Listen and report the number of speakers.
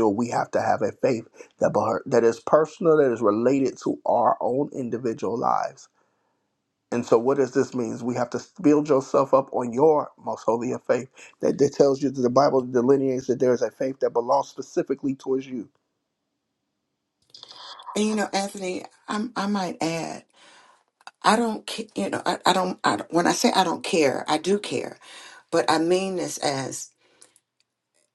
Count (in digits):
2